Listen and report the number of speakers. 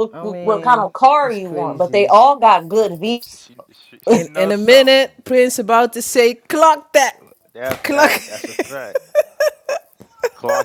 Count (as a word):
three